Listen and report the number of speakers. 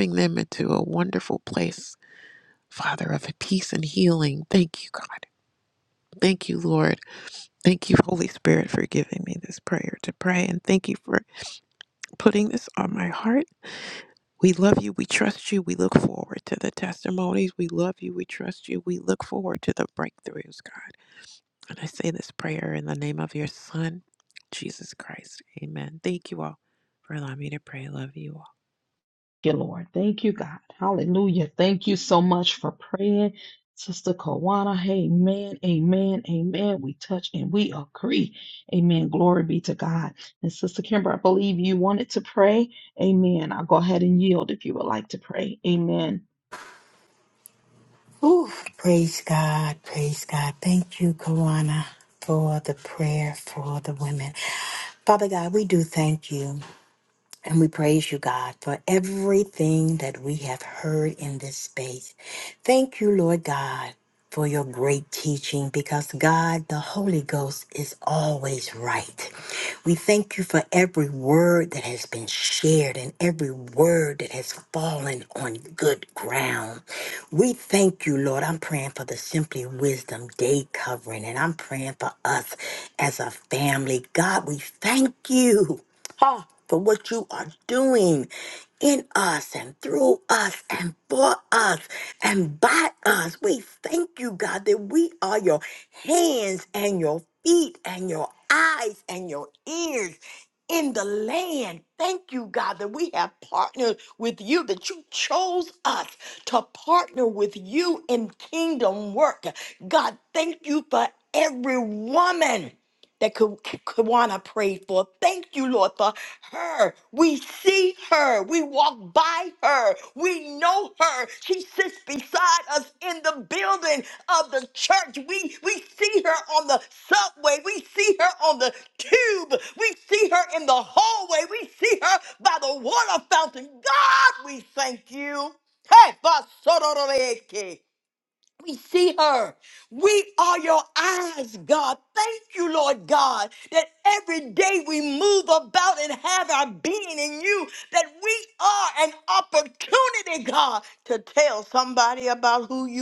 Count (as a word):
three